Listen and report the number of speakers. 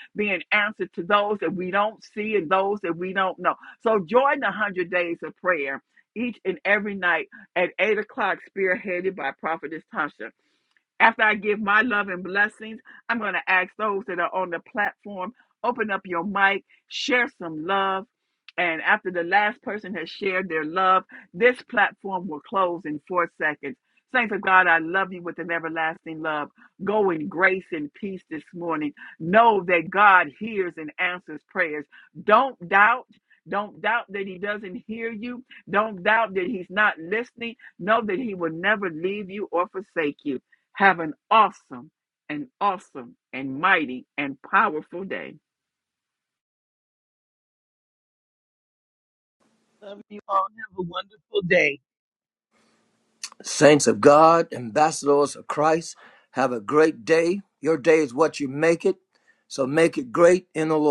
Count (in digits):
3